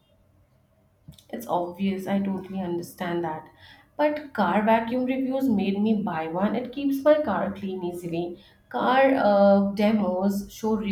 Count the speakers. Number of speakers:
one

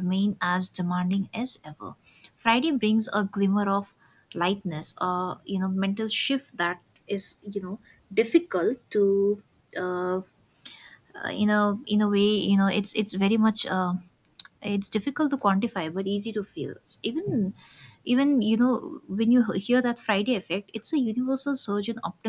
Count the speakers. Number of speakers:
one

